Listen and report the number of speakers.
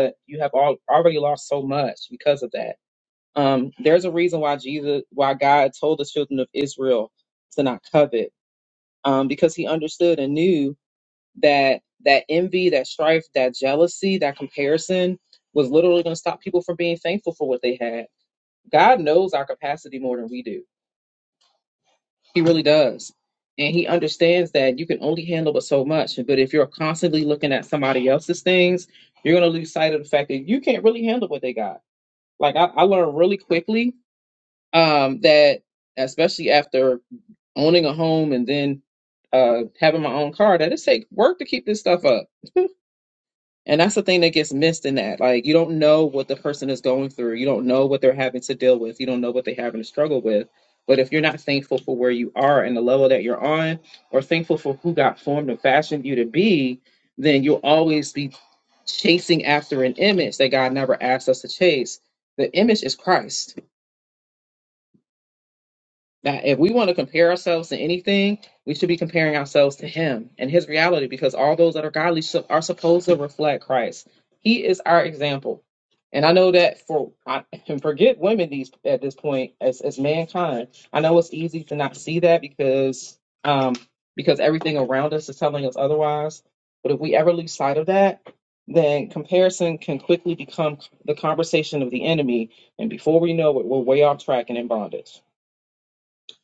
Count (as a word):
one